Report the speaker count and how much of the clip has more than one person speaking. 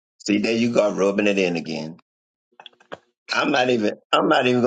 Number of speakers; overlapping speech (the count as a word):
one, no overlap